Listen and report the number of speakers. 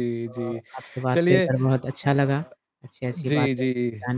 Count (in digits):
2